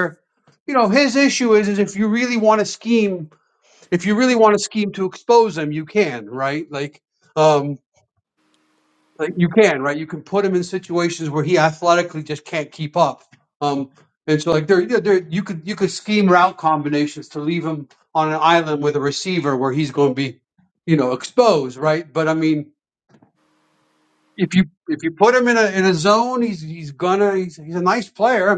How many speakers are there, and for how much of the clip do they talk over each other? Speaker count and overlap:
1, no overlap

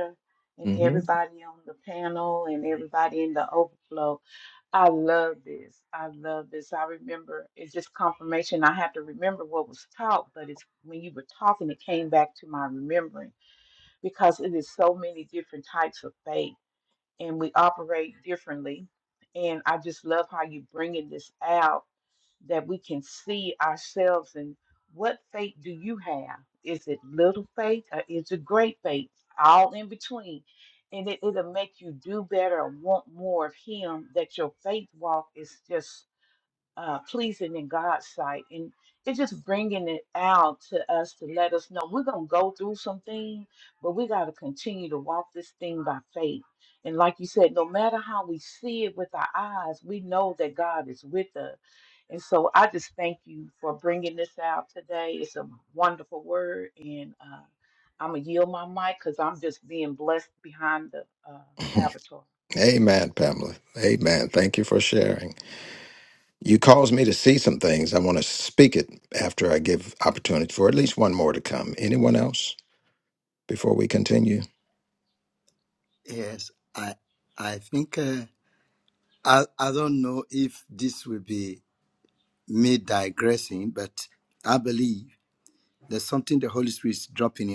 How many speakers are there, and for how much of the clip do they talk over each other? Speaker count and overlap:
3, under 1%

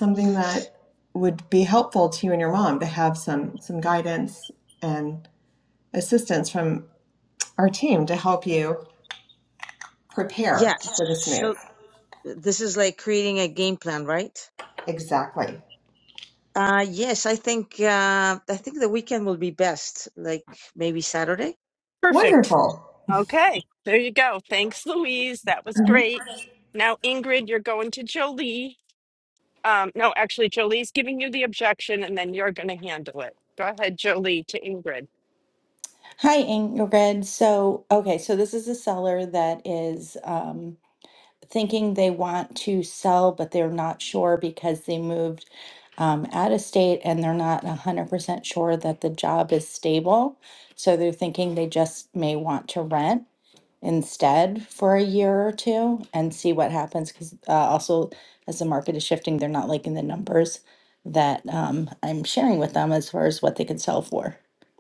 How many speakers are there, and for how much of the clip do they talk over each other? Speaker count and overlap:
4, about 2%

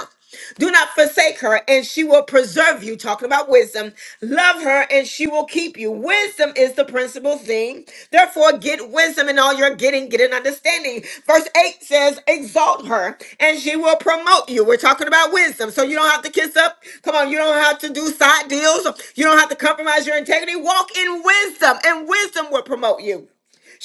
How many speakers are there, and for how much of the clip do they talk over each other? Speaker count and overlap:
1, no overlap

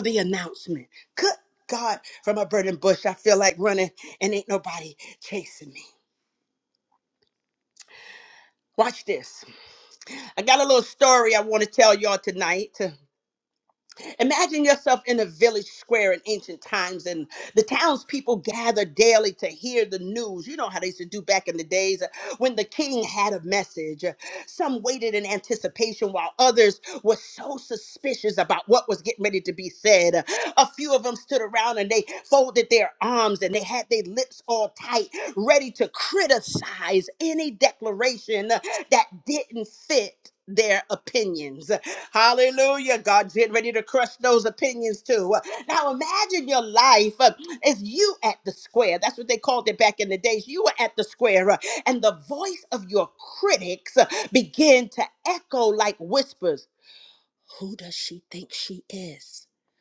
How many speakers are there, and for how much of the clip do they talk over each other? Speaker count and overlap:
1, no overlap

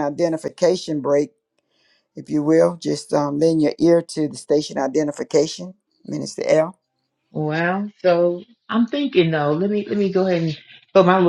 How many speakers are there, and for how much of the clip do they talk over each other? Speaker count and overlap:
2, no overlap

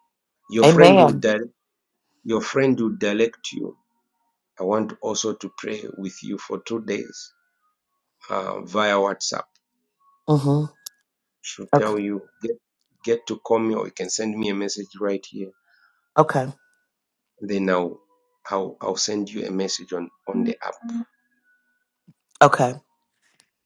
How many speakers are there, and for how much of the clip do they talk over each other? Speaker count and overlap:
2, about 4%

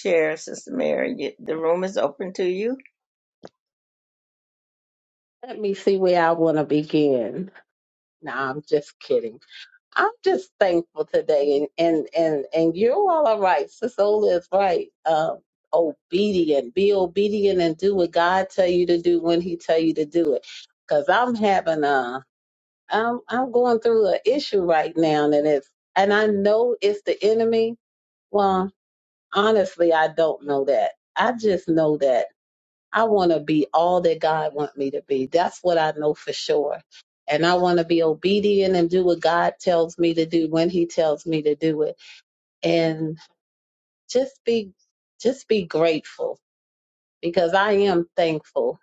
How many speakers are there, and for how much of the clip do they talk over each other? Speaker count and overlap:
2, no overlap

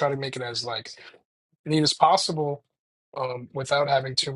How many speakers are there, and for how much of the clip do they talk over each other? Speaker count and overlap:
1, no overlap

